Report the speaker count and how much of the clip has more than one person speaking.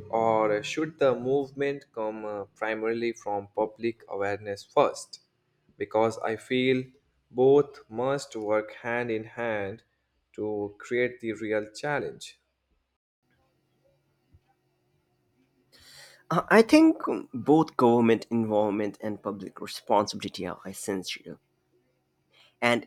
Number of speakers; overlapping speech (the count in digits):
2, no overlap